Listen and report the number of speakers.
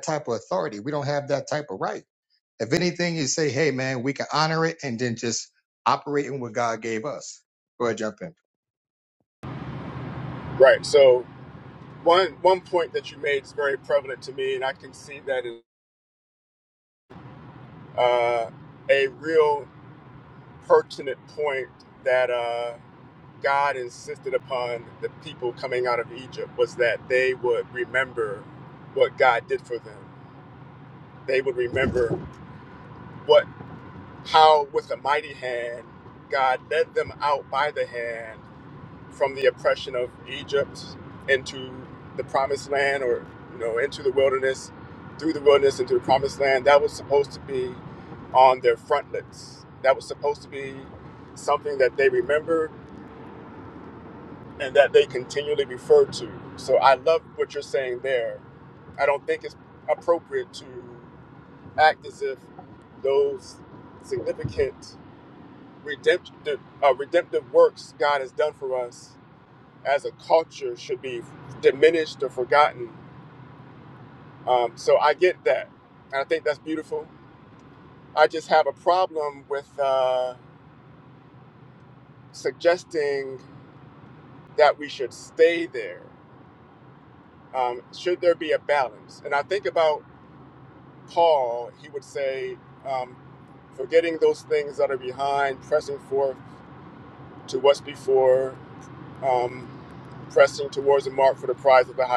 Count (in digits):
2